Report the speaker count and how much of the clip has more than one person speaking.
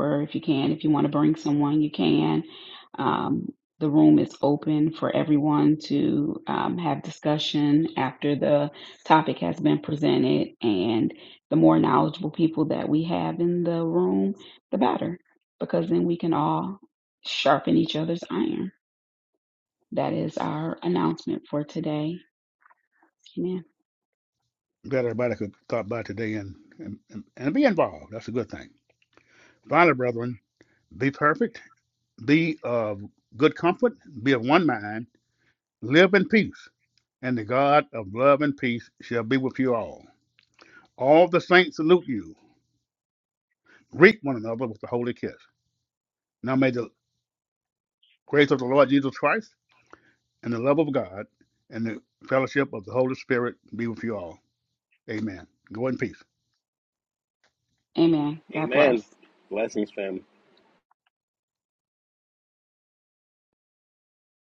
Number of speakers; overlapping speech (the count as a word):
three, about 1%